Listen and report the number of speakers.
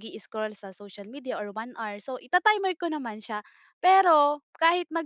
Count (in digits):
1